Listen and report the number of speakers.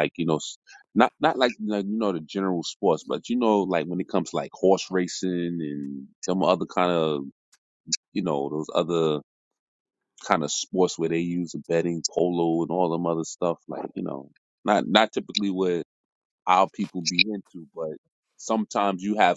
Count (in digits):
1